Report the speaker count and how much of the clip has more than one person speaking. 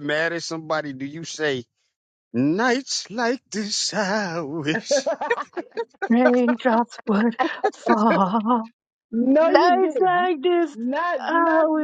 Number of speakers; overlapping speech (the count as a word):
three, about 13%